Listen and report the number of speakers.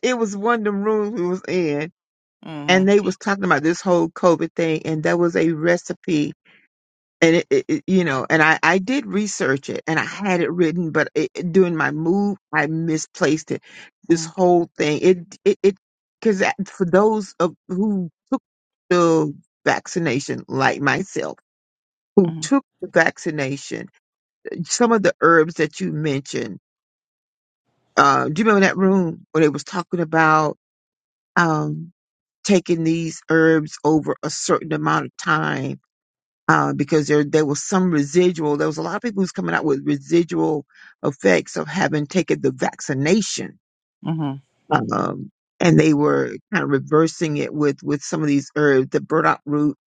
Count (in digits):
2